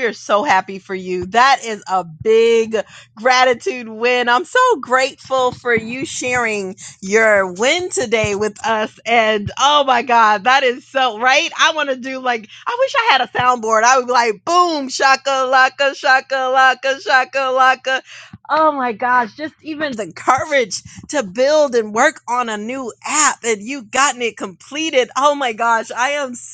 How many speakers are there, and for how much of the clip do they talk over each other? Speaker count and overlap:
1, no overlap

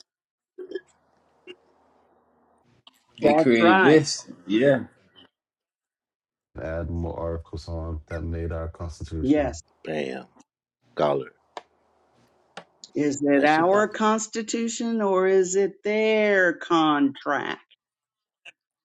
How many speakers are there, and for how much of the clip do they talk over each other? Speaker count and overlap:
4, about 9%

